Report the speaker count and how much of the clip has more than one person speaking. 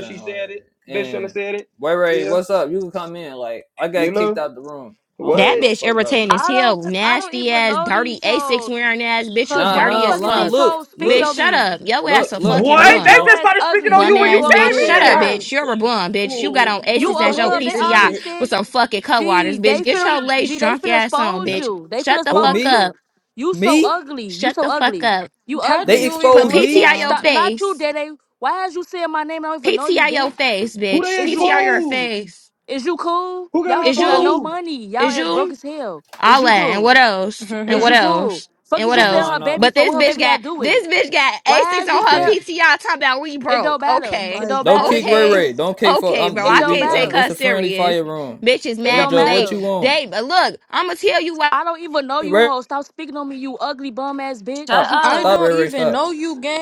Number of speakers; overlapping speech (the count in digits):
5, about 60%